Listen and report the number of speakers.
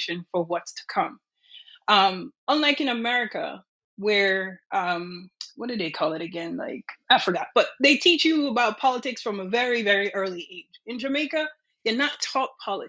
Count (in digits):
1